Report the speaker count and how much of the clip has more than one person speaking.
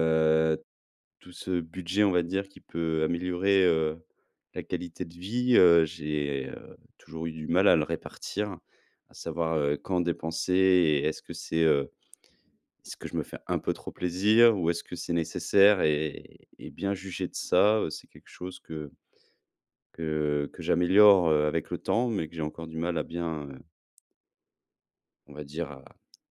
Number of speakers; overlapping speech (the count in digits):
1, no overlap